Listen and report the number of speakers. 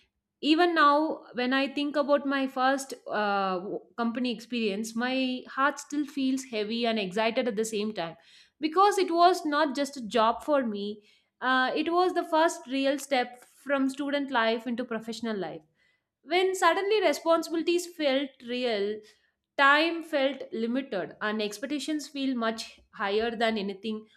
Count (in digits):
1